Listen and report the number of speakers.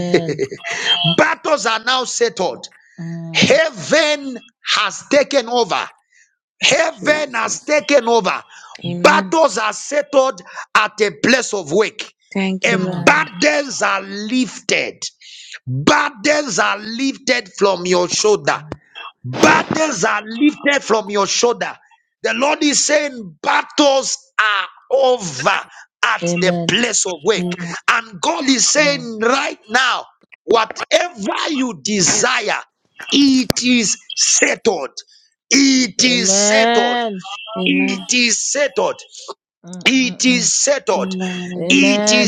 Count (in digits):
3